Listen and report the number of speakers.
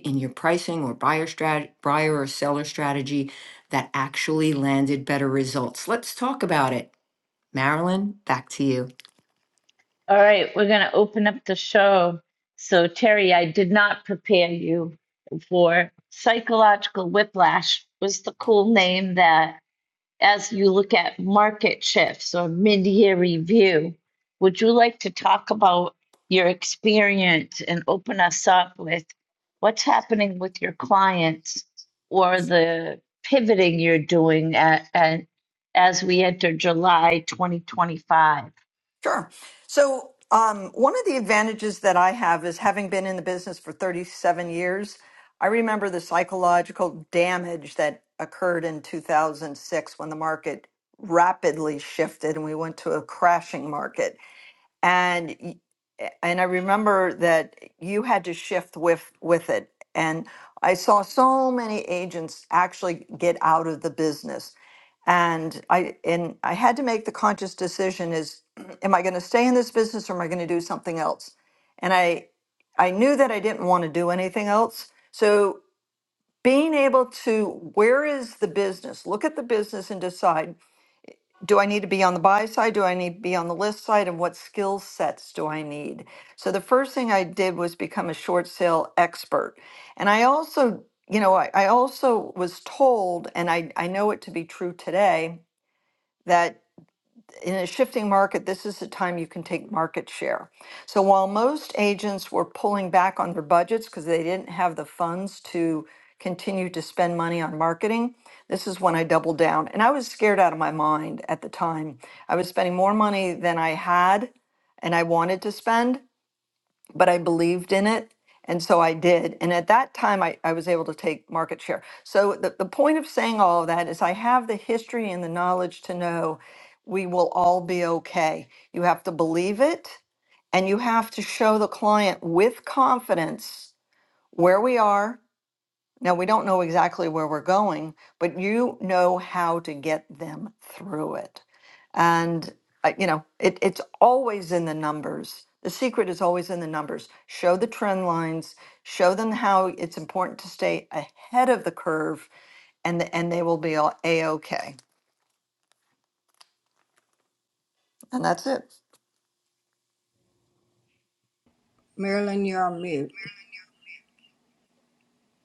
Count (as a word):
four